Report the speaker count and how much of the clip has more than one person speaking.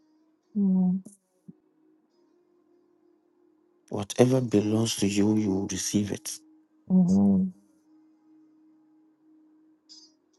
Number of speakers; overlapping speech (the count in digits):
2, no overlap